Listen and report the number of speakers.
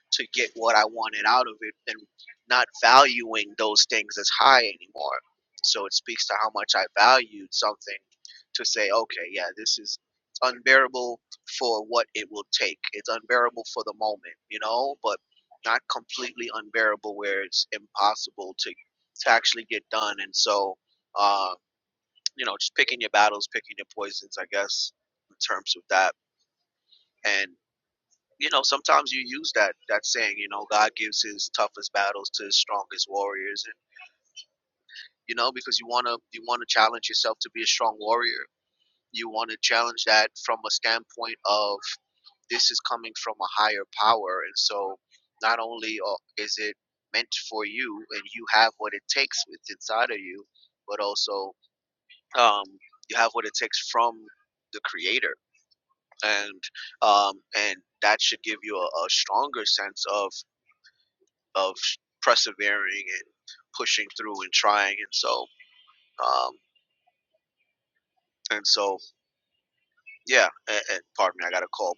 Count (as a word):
one